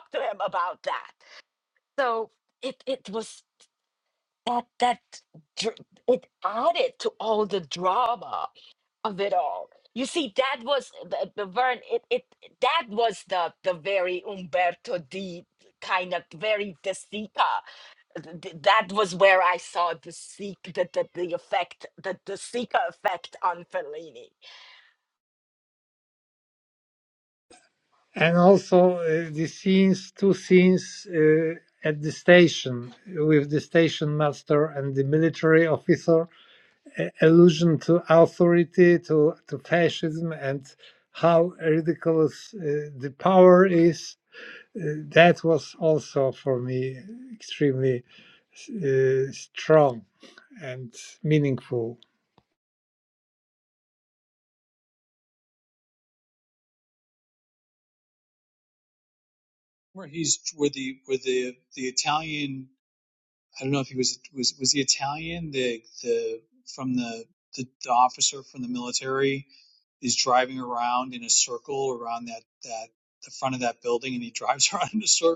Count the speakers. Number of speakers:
three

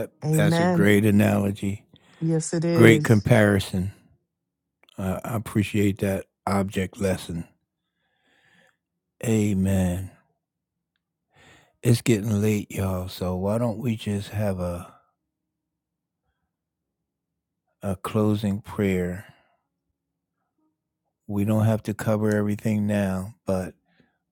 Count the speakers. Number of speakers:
two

